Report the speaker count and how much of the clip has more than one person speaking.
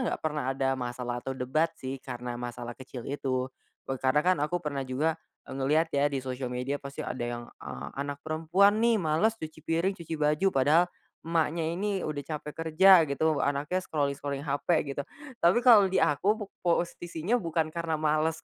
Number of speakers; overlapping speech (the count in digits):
1, no overlap